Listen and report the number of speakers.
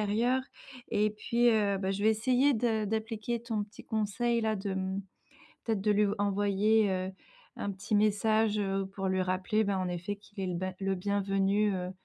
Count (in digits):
1